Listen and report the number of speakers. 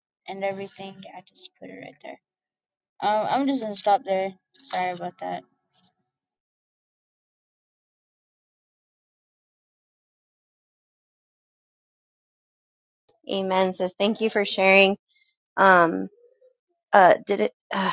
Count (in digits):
2